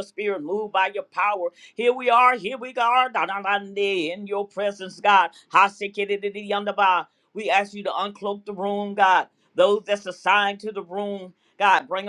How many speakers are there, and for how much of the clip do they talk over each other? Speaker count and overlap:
one, no overlap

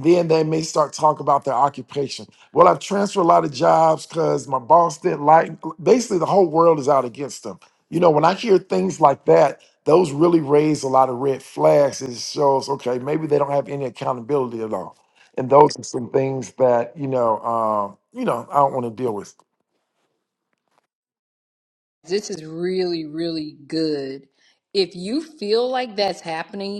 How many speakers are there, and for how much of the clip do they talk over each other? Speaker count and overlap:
two, no overlap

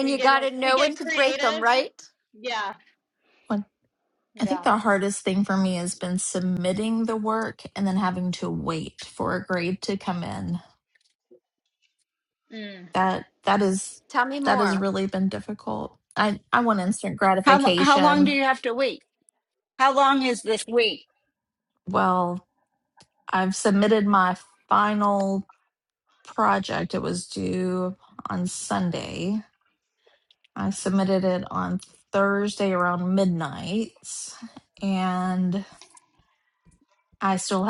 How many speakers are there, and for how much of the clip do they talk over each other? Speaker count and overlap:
four, about 7%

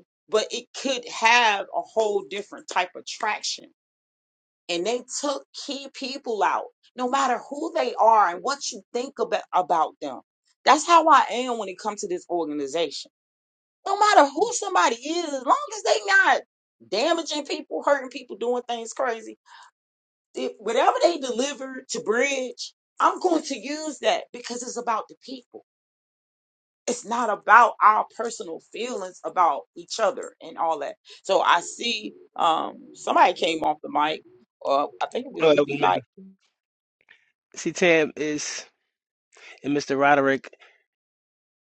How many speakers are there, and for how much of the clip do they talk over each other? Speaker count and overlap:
two, about 1%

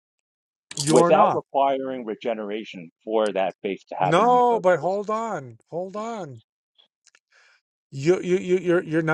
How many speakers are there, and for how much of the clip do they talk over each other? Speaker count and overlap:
two, about 15%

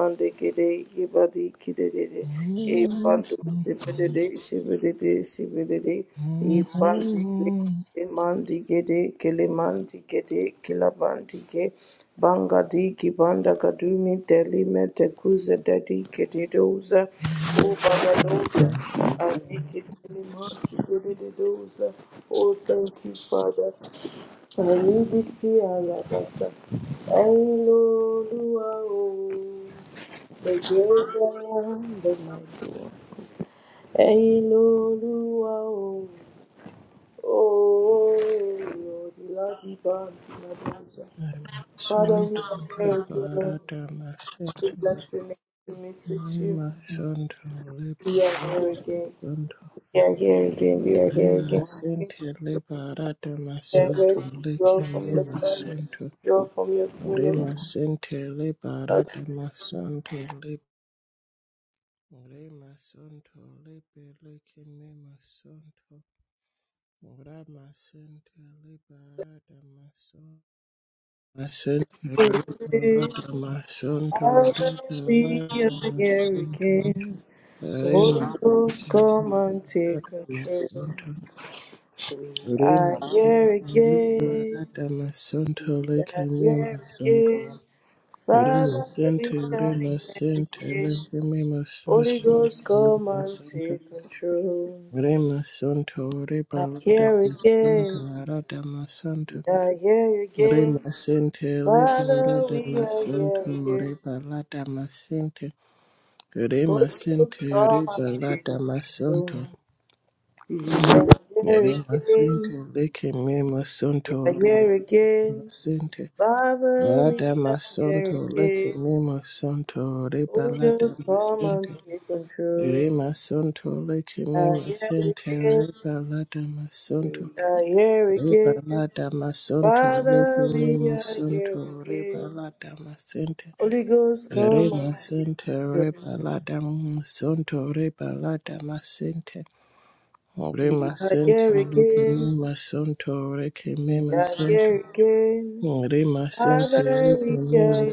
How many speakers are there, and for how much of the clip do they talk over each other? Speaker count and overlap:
two, about 28%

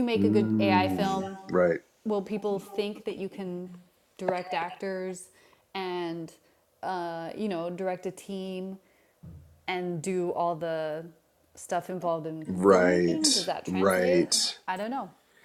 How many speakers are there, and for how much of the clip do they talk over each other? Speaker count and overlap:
two, about 20%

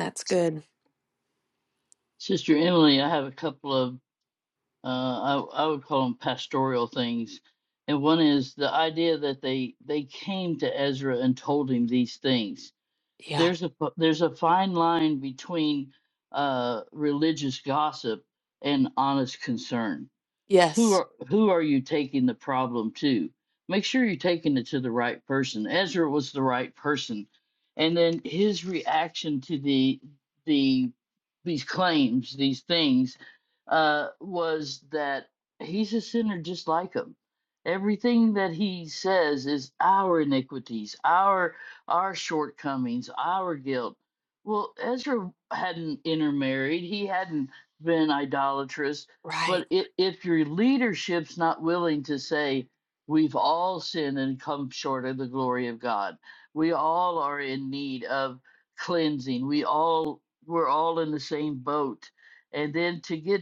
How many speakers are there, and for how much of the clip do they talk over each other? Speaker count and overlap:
two, under 1%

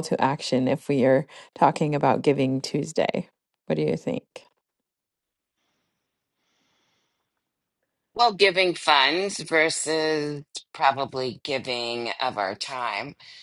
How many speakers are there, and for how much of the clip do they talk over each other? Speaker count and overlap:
two, no overlap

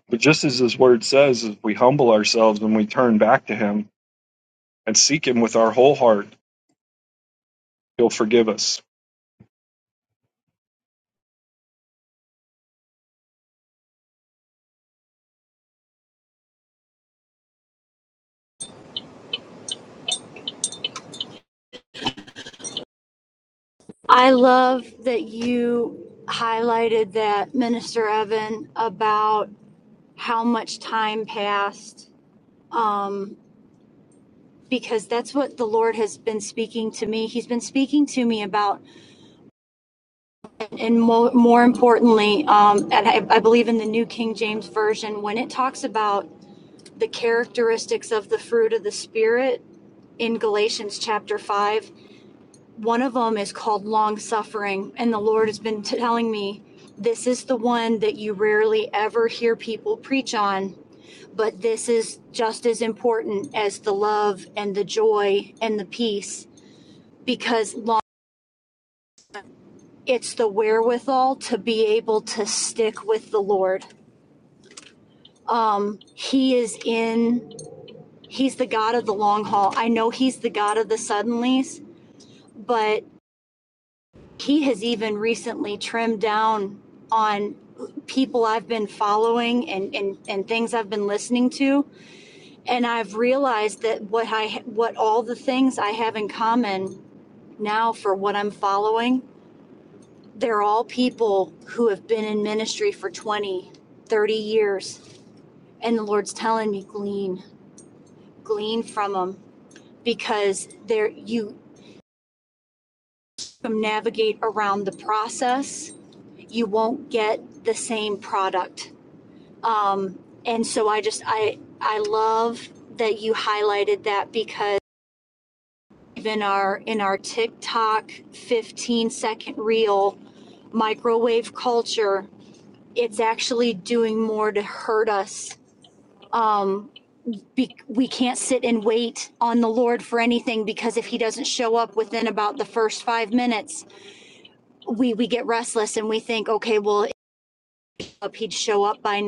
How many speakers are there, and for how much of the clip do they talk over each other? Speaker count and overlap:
two, no overlap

